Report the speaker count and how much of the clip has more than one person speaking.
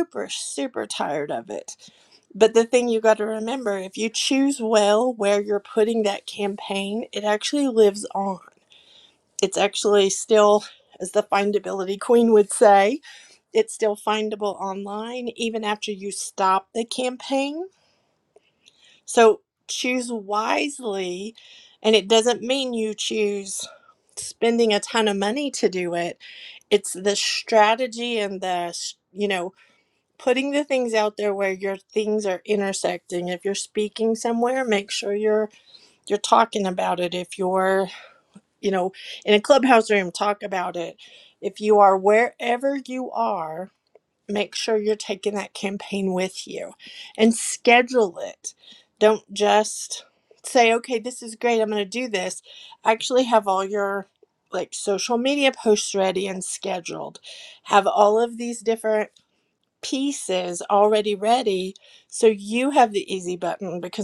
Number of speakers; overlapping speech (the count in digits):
1, no overlap